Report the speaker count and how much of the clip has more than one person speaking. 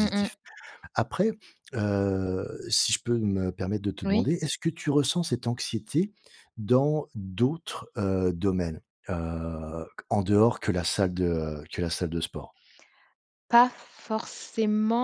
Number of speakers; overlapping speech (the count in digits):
2, about 3%